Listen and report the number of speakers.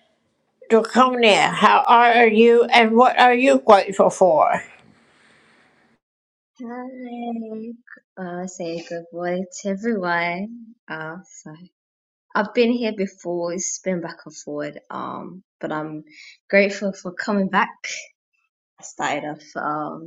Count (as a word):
two